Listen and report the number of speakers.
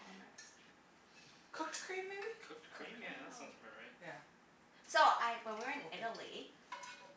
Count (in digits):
3